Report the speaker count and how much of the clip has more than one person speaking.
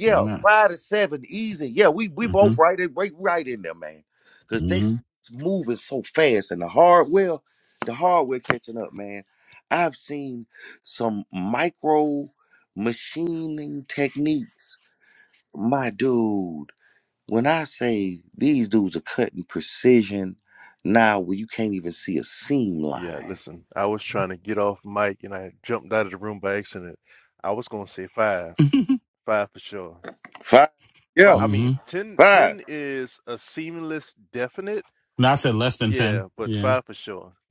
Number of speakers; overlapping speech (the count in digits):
3, about 8%